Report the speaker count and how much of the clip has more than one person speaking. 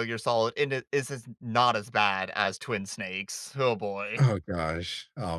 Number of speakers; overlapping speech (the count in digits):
2, about 1%